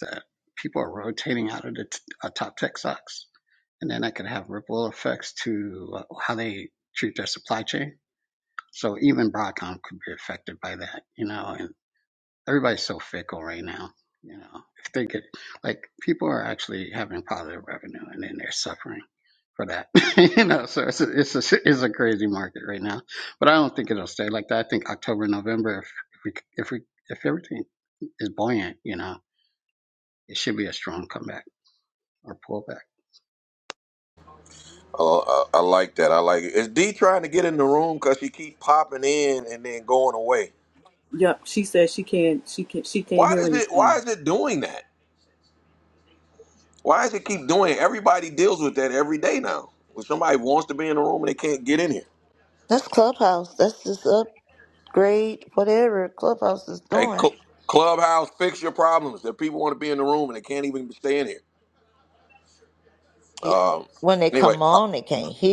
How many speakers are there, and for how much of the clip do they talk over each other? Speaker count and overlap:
4, about 2%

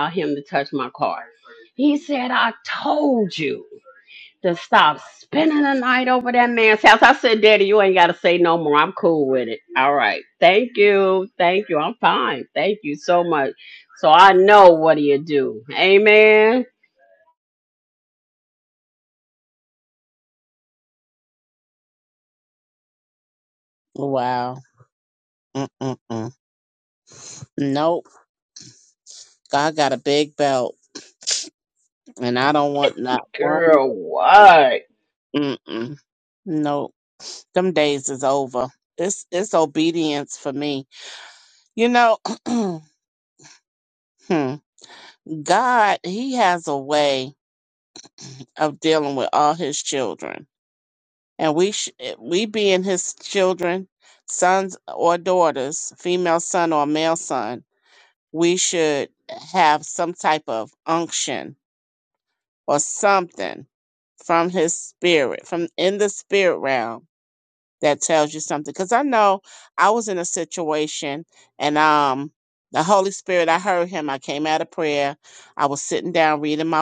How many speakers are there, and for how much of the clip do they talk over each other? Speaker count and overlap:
2, about 1%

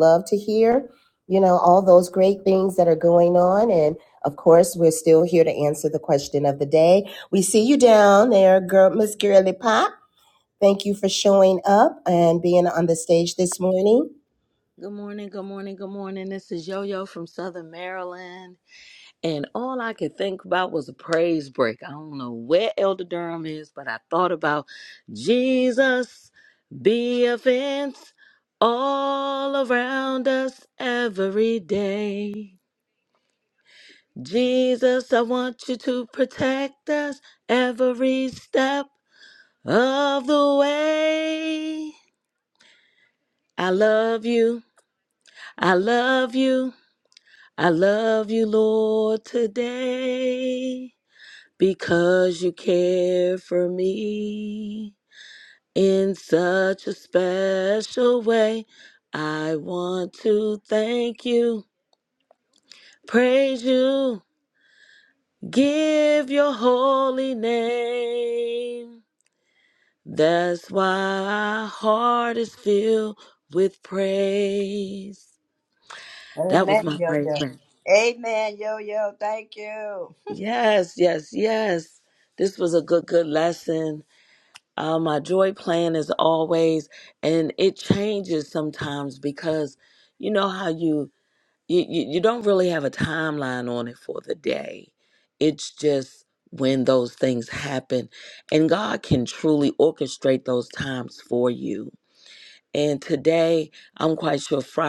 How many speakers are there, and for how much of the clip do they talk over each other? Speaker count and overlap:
3, about 1%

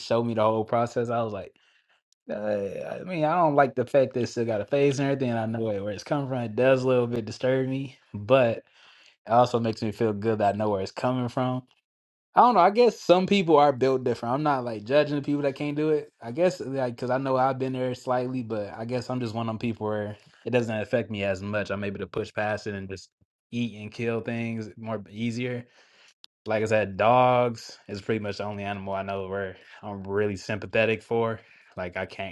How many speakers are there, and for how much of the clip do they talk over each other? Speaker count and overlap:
1, no overlap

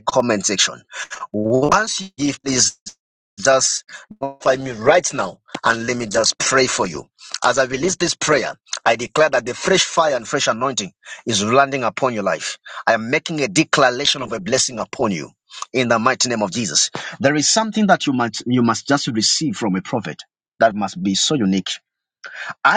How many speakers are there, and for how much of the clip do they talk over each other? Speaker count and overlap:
1, no overlap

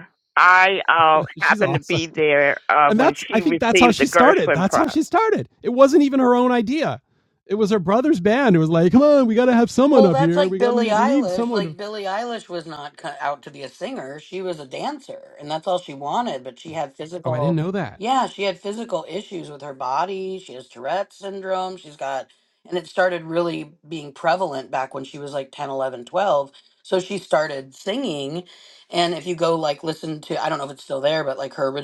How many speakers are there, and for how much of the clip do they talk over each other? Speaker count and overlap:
3, about 15%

